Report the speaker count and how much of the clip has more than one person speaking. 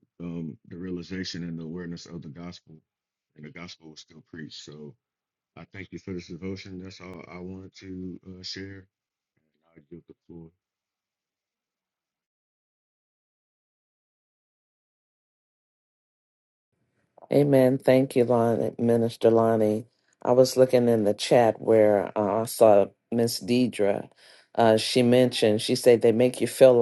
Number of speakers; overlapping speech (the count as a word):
two, no overlap